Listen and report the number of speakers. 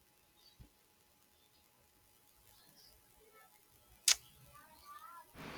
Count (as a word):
zero